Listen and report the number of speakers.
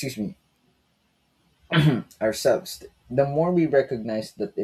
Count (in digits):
1